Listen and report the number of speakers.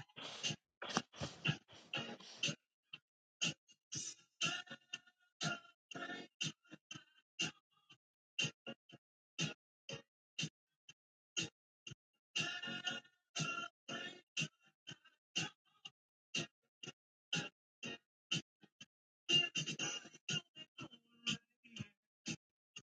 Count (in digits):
0